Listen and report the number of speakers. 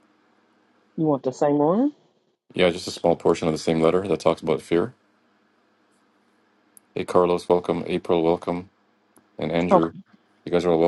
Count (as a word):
two